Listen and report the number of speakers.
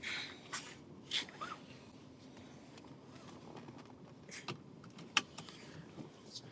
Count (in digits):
0